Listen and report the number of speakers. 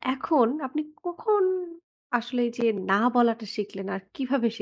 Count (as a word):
one